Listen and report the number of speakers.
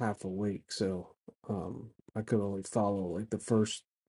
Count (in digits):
1